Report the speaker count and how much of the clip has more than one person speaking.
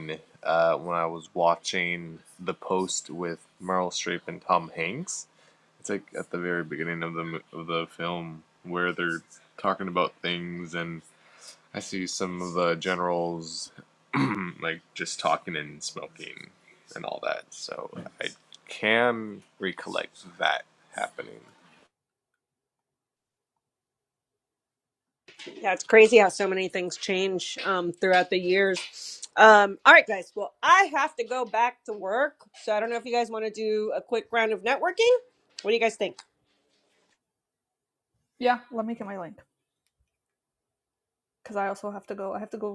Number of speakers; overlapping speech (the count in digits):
3, no overlap